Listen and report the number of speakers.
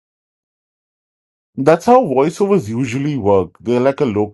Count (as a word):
one